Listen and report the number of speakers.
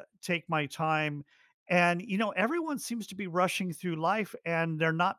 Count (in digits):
1